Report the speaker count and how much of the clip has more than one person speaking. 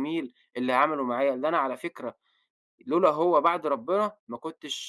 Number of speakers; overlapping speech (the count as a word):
one, no overlap